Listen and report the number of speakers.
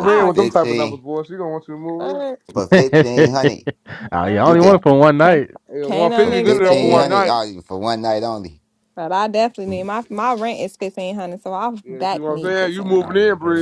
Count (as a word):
four